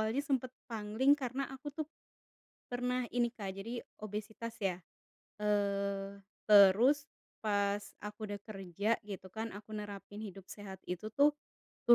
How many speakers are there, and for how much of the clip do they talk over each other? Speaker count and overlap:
one, no overlap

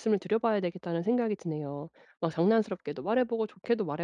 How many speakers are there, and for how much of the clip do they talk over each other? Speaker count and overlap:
one, no overlap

